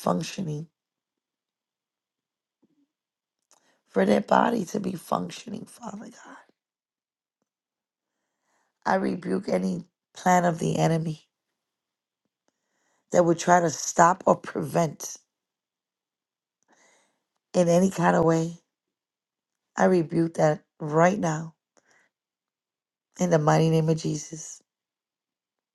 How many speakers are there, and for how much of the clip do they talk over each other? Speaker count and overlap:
one, no overlap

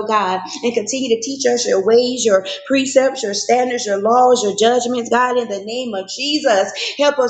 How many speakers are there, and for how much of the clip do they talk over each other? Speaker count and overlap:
one, no overlap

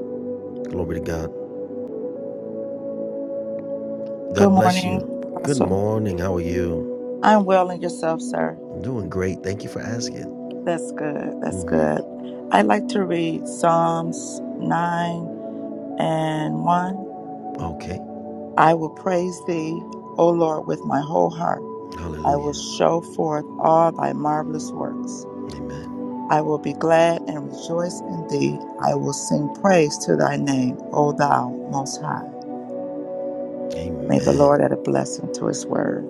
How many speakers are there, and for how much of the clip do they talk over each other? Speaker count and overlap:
two, about 4%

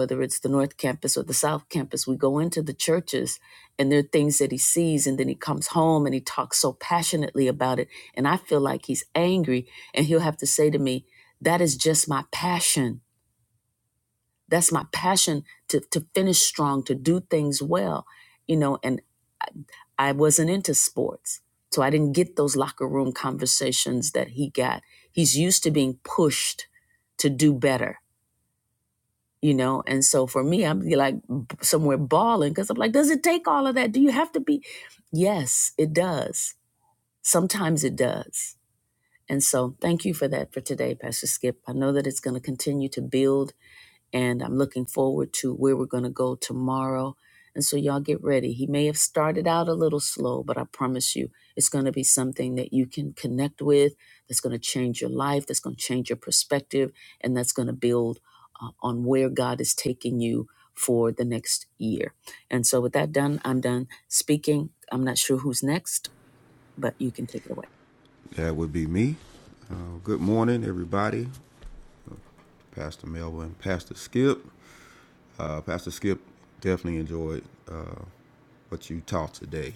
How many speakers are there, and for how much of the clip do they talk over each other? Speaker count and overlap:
two, no overlap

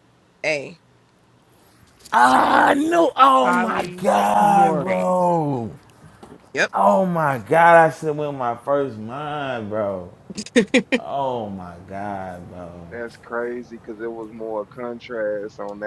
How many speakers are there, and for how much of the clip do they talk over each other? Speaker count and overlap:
three, about 9%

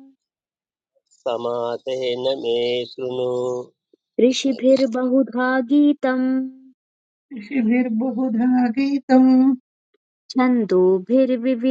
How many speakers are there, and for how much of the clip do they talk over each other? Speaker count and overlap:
three, about 5%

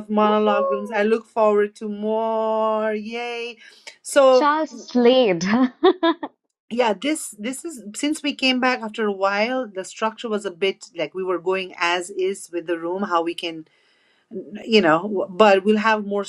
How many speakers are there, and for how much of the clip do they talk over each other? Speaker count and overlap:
two, about 6%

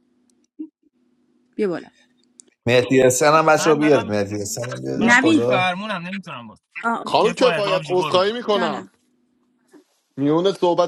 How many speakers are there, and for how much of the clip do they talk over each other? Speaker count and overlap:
four, about 24%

